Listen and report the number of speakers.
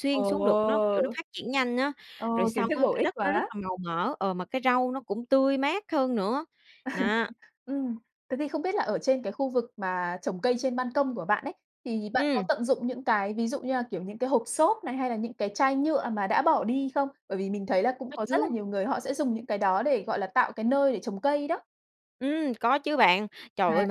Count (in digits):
2